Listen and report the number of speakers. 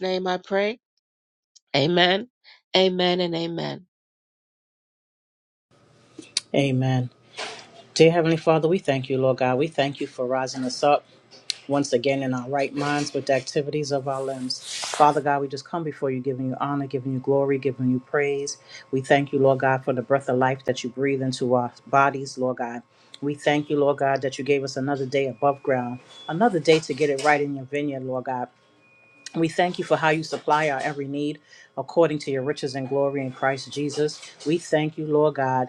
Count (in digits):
2